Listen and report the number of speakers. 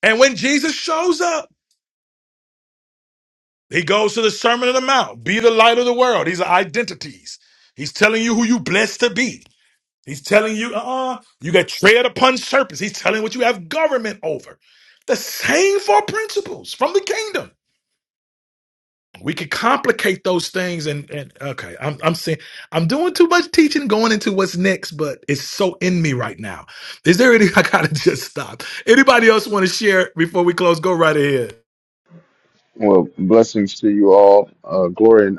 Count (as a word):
two